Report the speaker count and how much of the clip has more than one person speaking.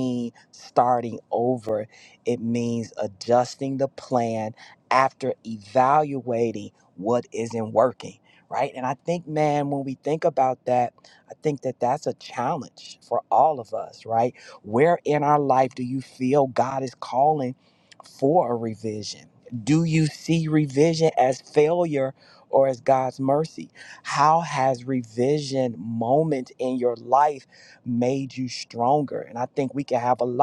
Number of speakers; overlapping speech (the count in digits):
1, no overlap